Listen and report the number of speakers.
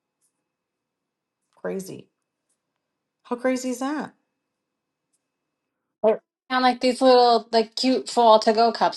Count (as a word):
two